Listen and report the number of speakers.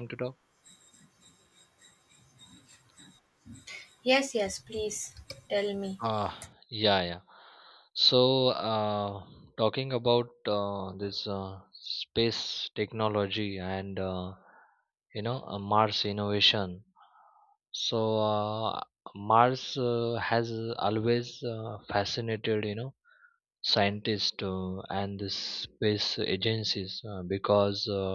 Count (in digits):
2